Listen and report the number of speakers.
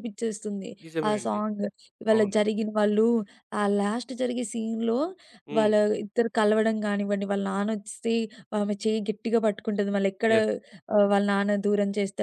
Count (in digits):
2